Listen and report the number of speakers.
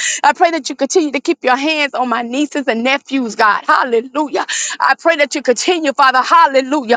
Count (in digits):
1